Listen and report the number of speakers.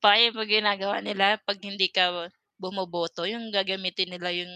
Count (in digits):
1